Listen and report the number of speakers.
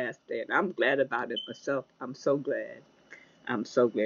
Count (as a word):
one